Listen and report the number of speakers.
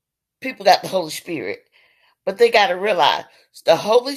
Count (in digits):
1